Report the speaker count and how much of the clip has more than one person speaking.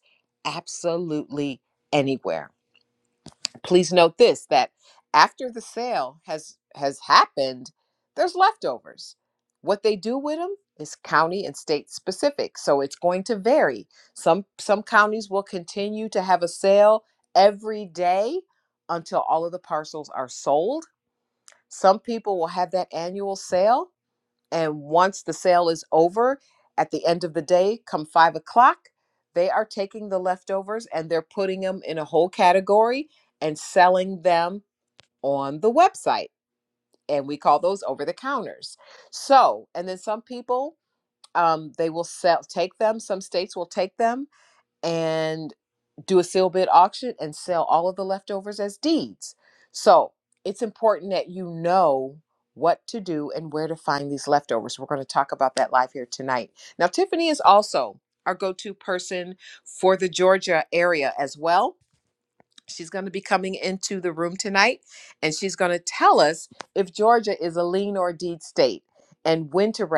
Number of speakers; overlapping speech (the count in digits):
1, no overlap